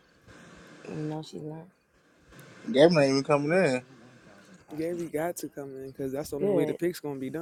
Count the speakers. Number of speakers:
three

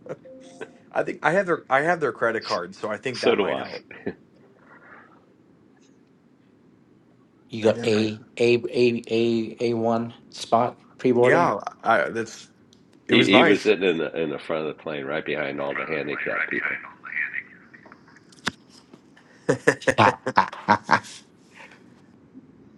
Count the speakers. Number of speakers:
three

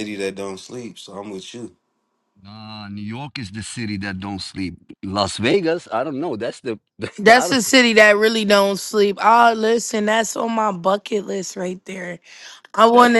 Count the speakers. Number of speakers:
three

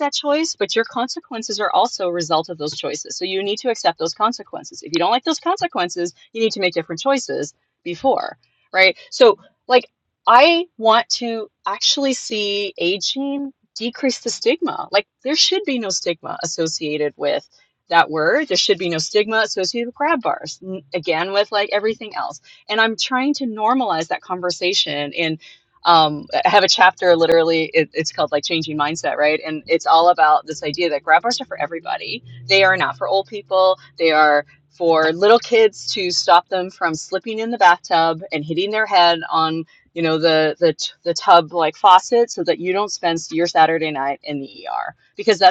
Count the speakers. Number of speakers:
one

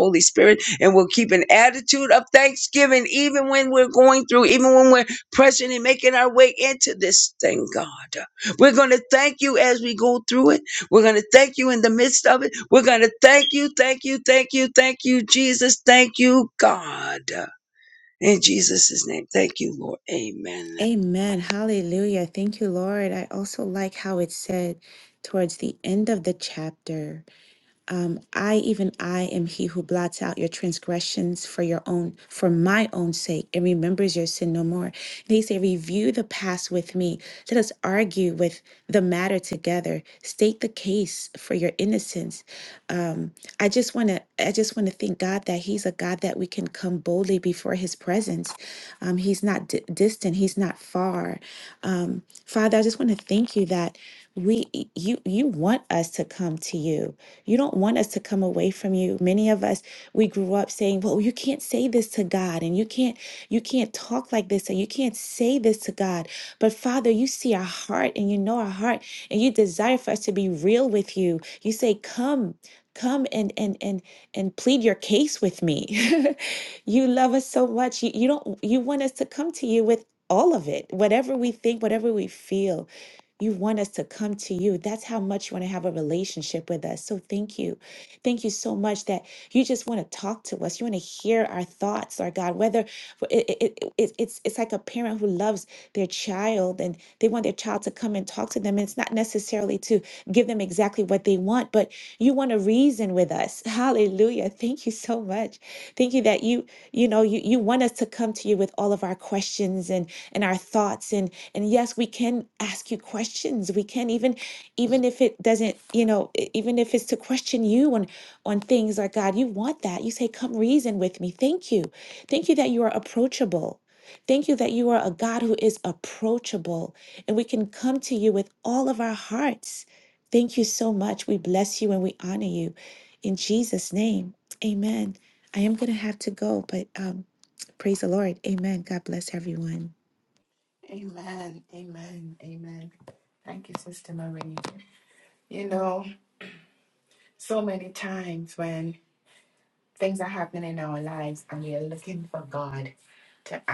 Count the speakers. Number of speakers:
three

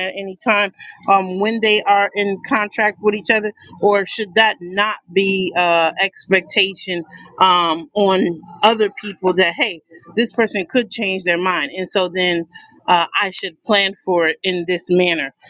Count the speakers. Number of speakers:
one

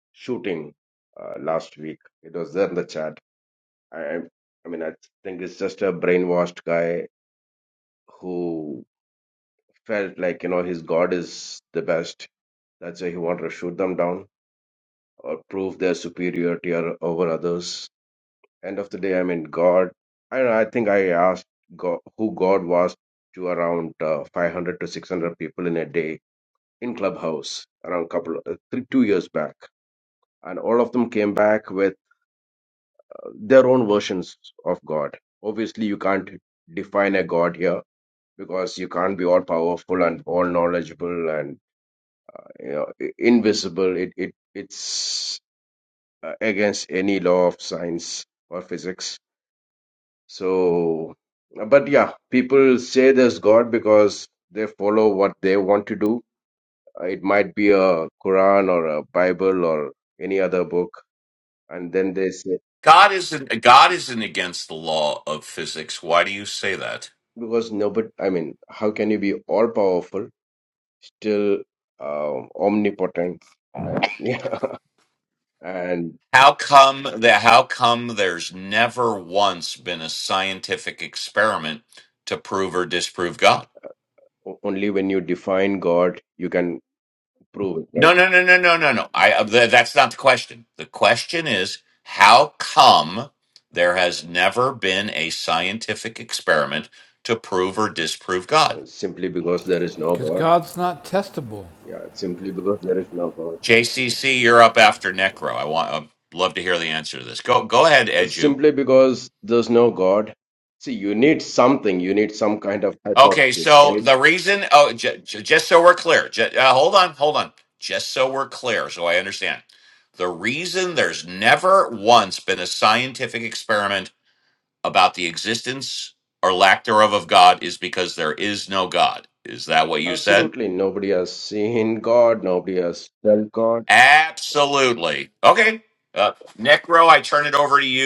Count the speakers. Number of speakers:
three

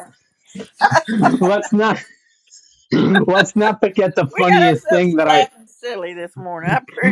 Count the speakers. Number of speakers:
two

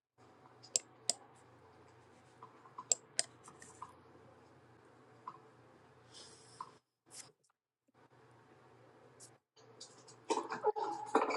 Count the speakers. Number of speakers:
zero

